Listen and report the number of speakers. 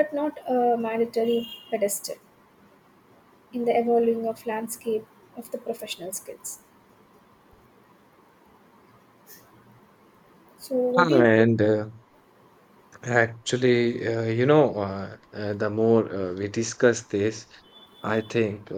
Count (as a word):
two